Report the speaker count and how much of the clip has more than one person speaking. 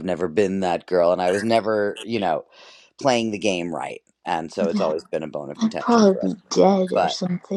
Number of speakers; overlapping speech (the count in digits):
2, about 16%